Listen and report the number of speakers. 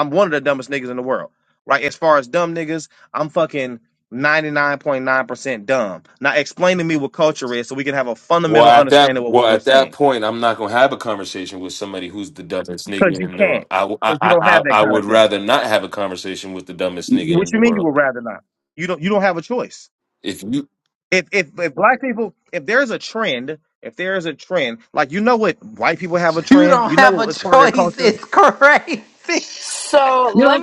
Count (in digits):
4